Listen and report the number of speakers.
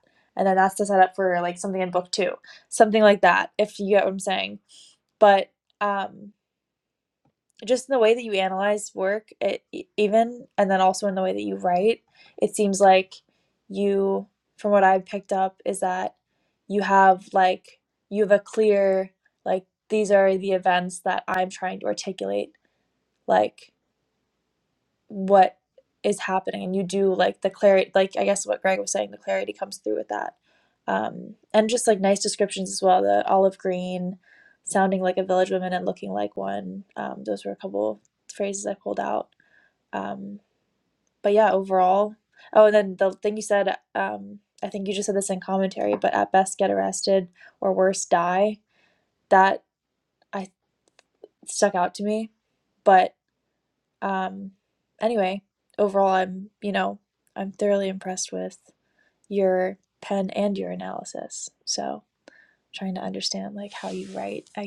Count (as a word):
one